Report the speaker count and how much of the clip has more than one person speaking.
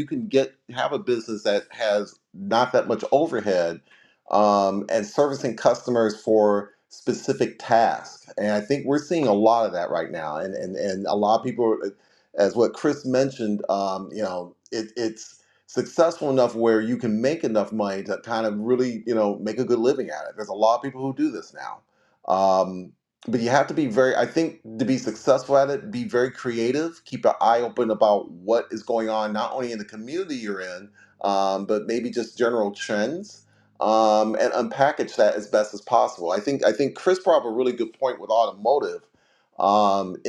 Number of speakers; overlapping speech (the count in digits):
1, no overlap